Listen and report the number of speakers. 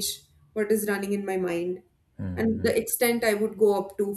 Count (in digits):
1